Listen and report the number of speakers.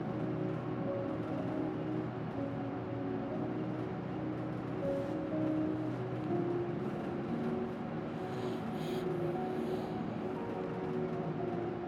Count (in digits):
0